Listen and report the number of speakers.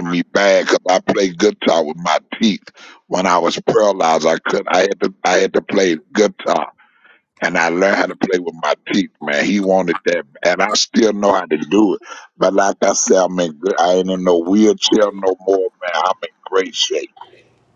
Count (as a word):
one